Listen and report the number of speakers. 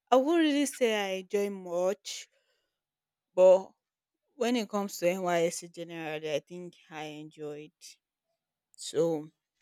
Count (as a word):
one